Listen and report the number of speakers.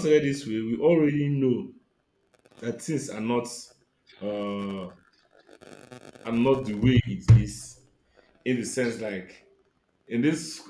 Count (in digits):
1